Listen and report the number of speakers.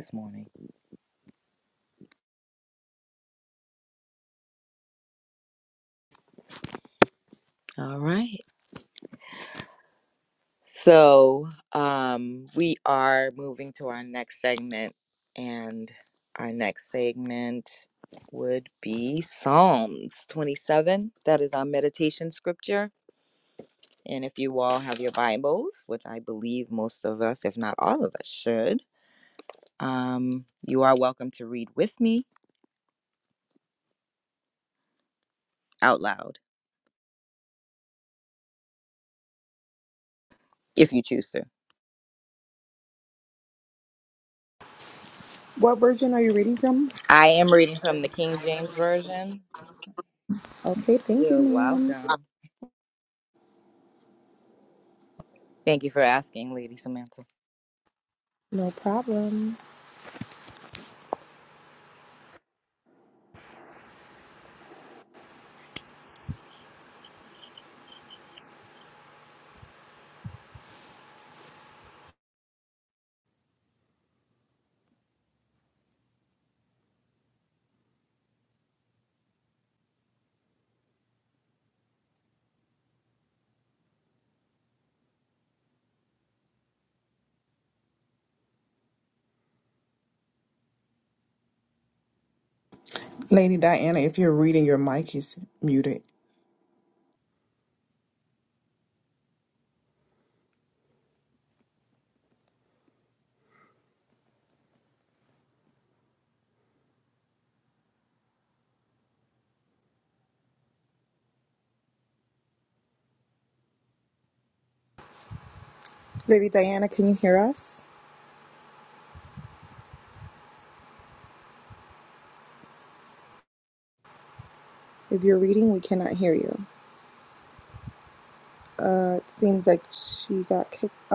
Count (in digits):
3